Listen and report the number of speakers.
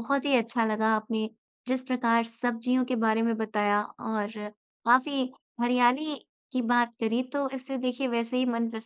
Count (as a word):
one